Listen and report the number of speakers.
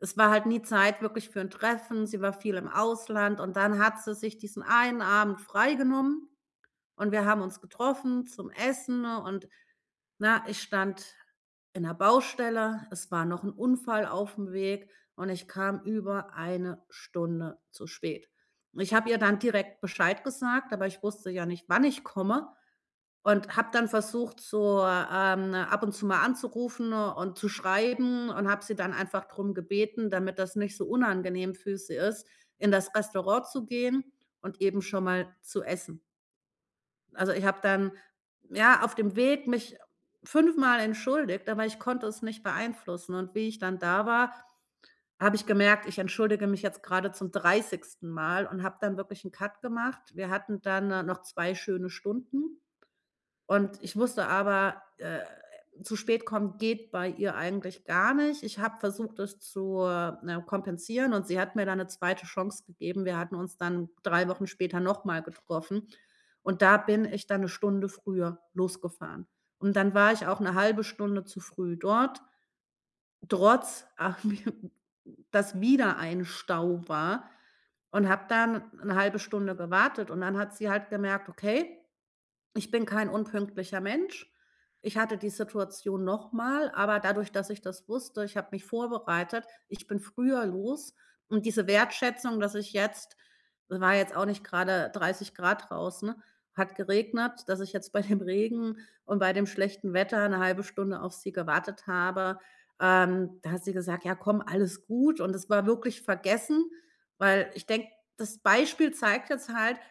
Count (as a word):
one